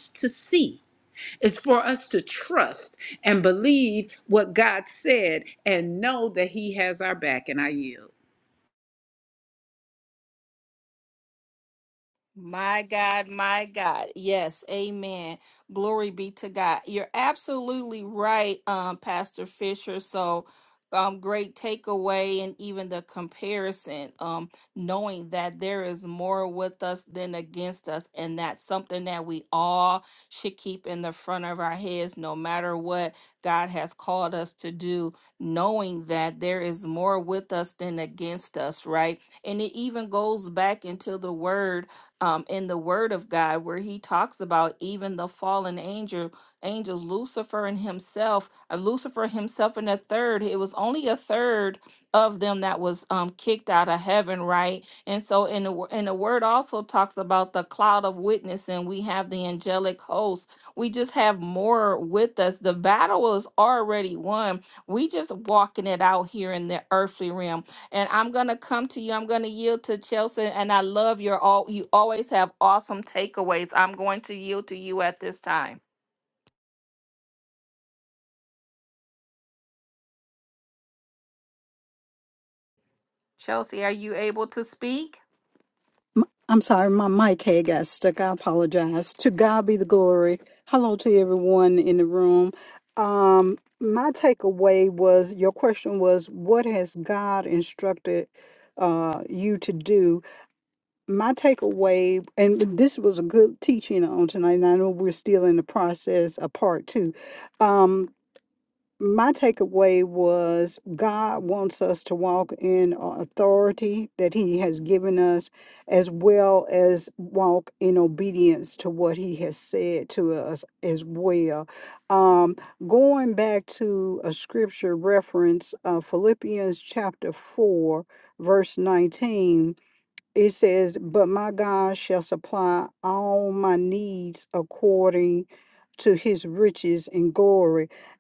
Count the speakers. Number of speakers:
three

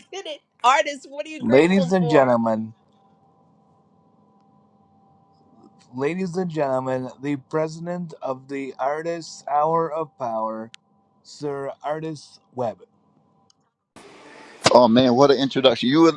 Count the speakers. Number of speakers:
three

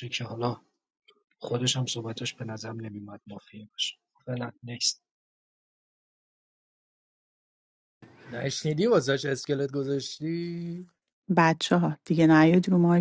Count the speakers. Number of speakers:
three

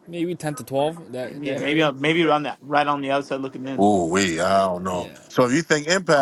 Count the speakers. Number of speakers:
three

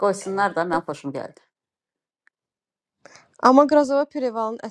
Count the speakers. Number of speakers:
two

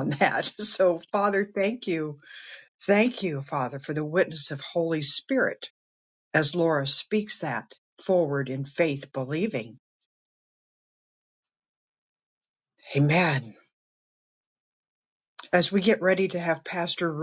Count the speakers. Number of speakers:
one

